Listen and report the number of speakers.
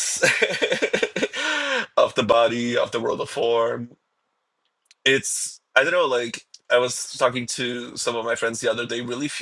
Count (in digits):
1